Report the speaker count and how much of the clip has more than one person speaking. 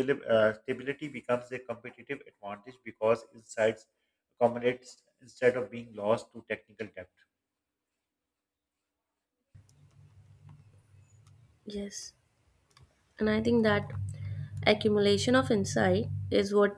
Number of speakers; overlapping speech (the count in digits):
2, no overlap